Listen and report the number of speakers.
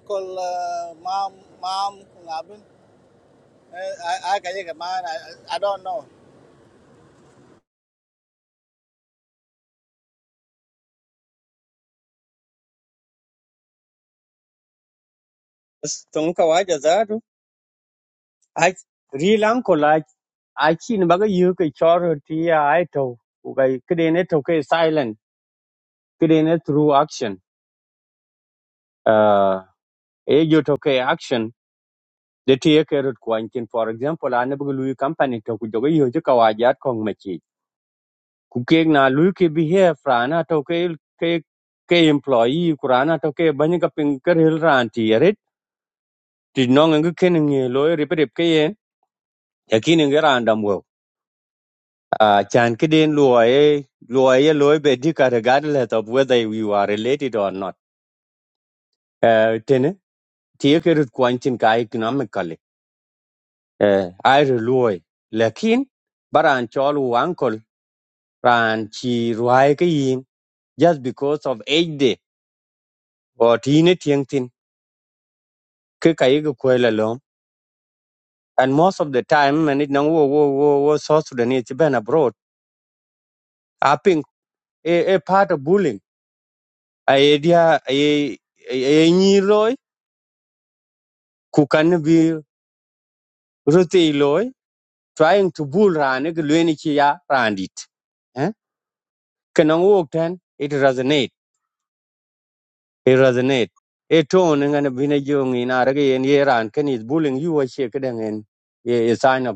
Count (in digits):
2